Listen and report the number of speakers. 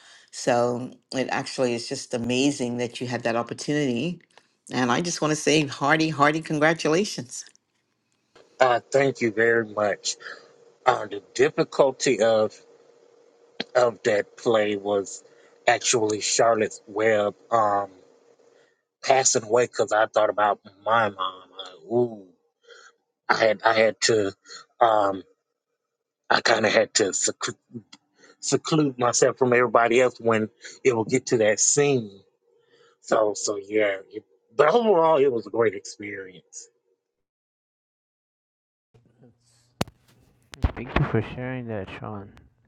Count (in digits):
3